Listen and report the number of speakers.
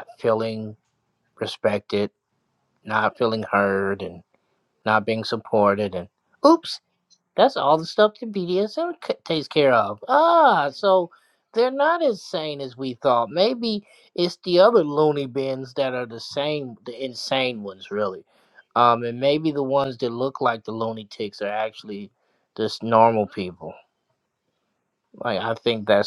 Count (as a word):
one